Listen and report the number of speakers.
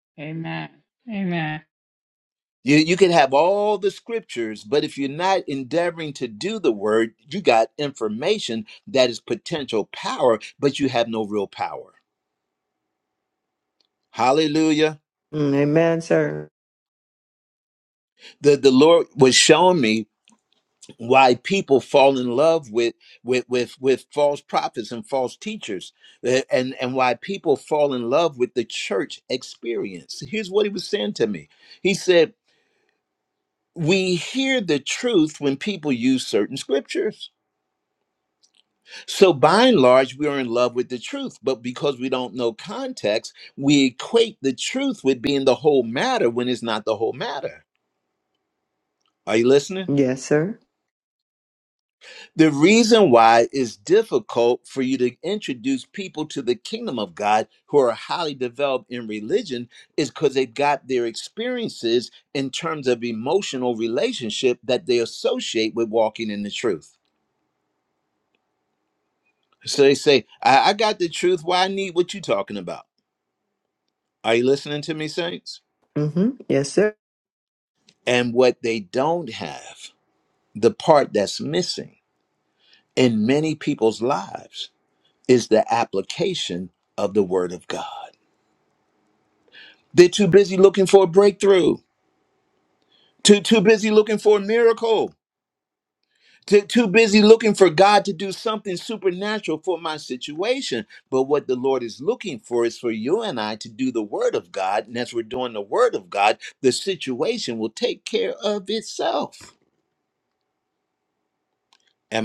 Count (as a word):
three